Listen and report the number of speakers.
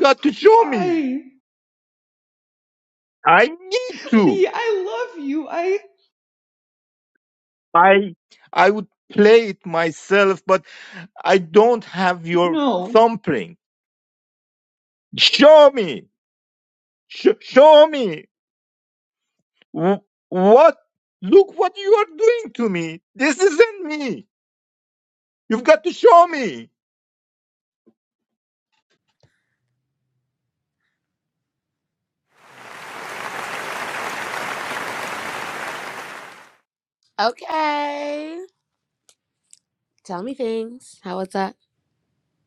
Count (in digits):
3